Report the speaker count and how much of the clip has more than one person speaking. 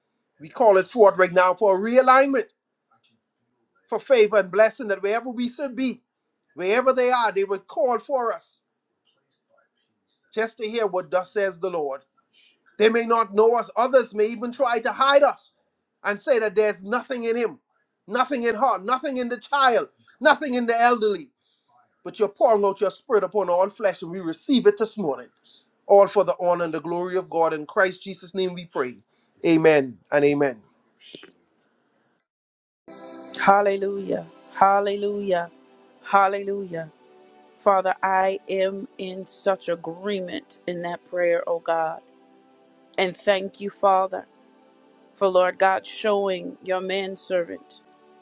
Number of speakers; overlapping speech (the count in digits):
2, no overlap